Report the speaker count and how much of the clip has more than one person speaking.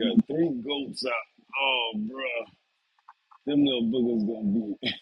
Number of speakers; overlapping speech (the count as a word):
one, no overlap